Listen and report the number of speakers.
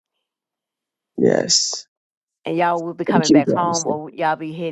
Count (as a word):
two